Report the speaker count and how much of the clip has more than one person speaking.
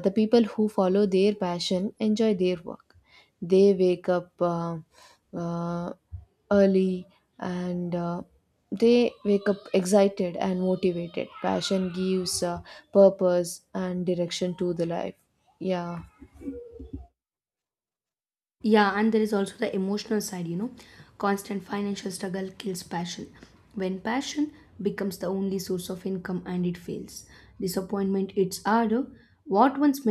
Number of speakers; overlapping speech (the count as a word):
two, no overlap